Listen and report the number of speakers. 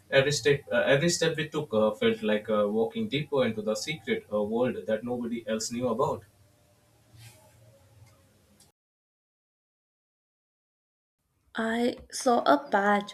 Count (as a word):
two